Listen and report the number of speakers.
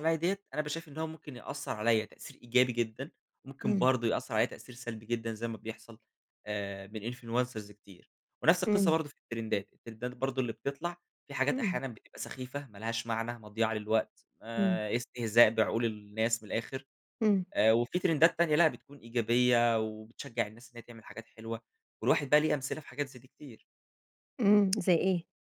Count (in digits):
2